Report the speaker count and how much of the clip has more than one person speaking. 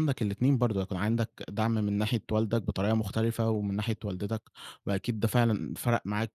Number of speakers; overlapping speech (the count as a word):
one, no overlap